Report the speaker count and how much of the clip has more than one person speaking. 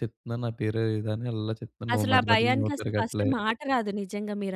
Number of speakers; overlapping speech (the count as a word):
two, about 32%